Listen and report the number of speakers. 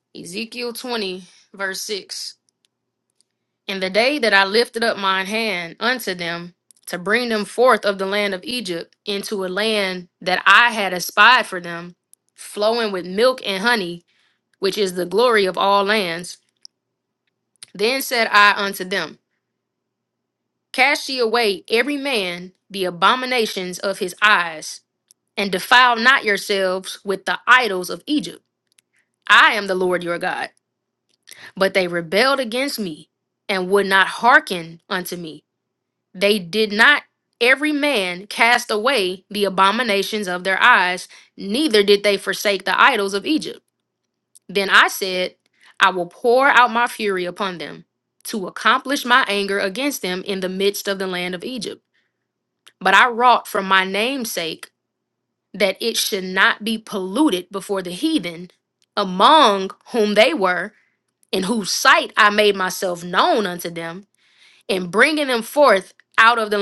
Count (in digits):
1